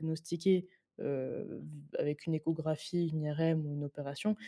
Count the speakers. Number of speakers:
one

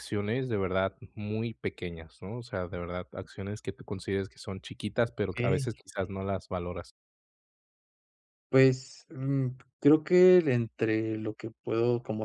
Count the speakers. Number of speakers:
two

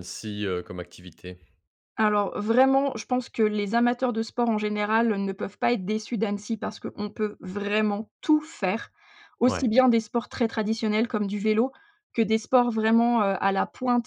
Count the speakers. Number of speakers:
two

